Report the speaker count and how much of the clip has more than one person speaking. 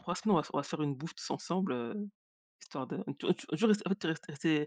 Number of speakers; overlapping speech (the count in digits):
1, no overlap